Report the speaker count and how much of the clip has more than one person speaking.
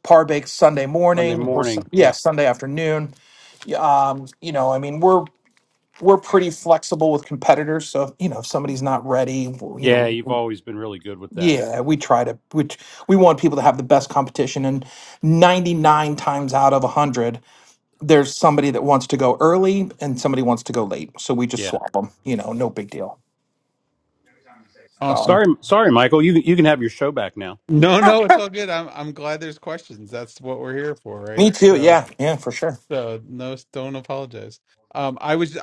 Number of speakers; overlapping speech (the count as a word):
three, about 8%